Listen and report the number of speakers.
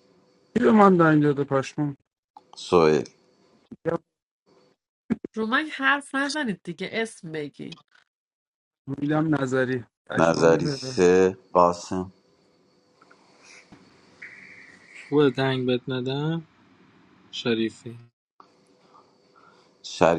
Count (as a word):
four